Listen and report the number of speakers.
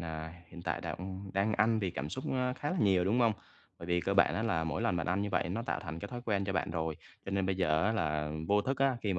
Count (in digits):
1